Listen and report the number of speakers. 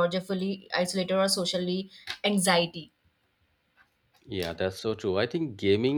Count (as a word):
two